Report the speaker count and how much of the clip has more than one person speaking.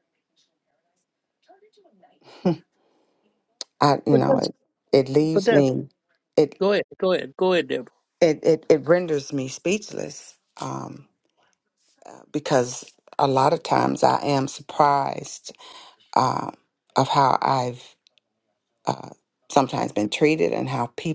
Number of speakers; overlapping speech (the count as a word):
two, about 3%